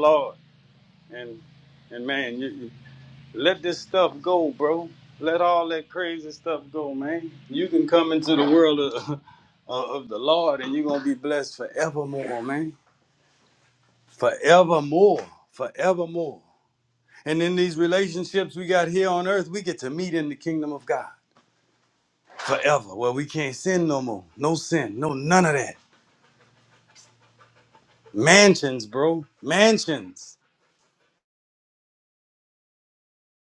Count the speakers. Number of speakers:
one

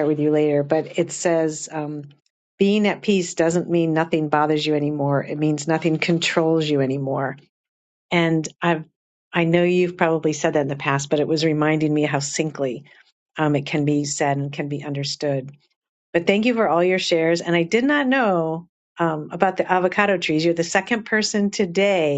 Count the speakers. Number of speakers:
one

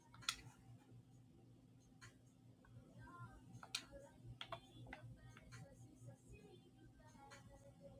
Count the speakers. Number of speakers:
zero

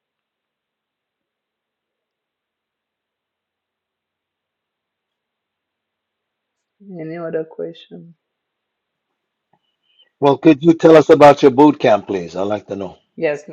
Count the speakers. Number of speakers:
two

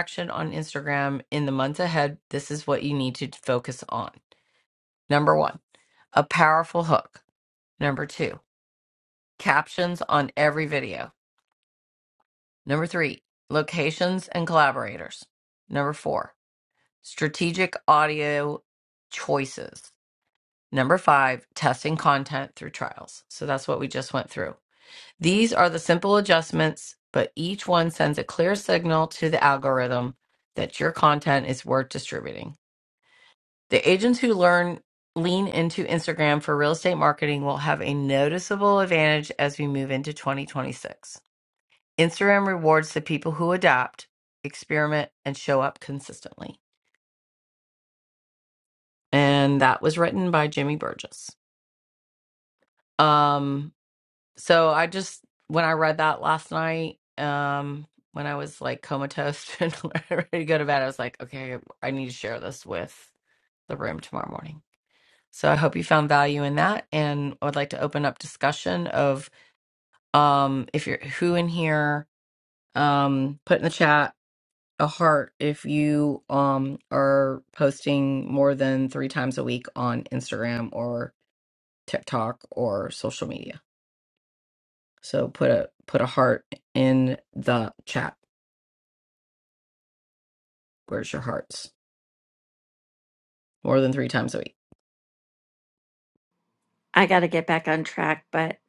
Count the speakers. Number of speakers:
two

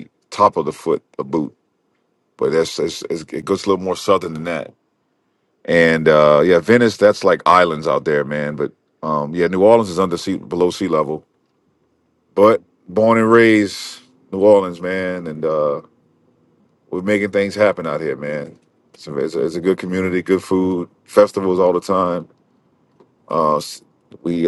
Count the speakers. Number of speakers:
one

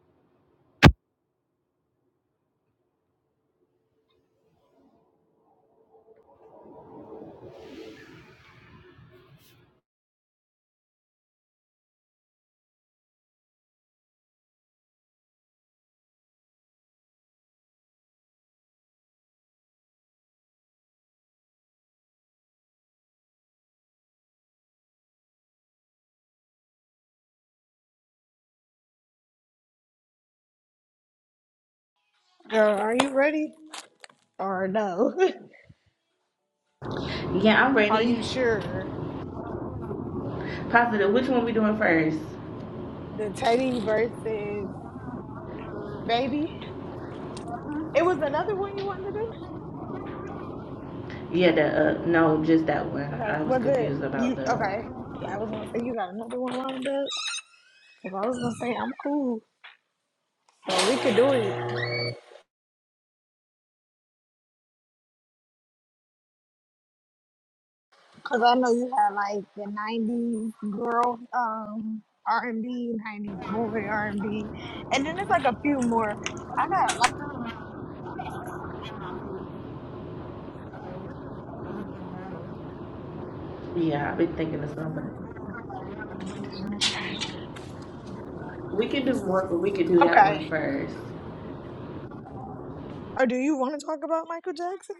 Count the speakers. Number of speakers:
two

